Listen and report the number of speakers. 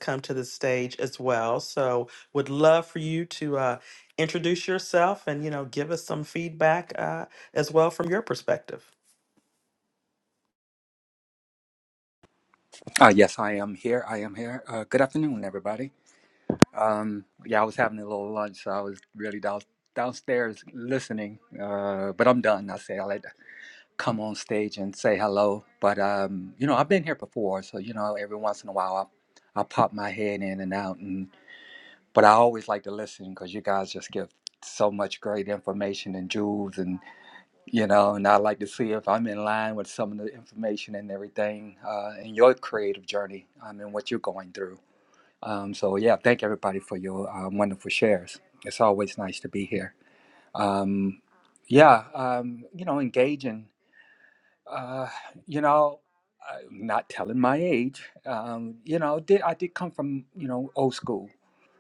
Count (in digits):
2